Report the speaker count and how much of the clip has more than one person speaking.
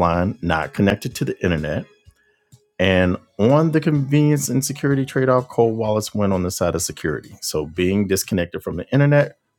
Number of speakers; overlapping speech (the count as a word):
one, no overlap